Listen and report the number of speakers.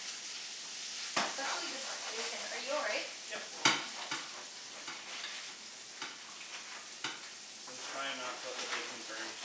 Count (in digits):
2